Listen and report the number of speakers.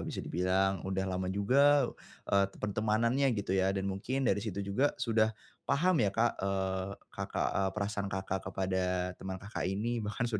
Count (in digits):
1